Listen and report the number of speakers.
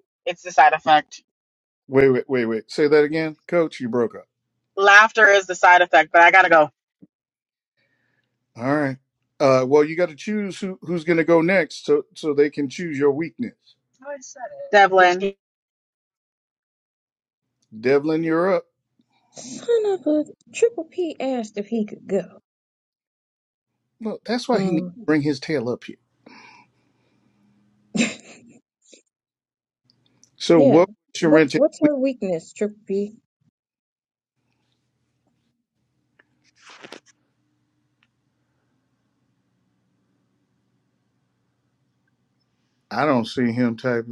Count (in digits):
3